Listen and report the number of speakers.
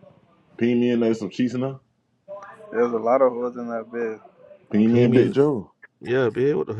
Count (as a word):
three